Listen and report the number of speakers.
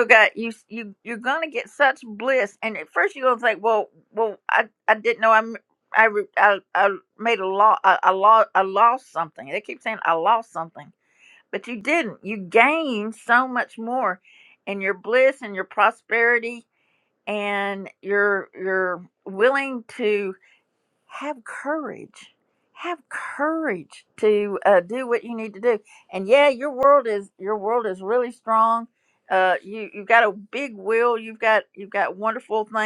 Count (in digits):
1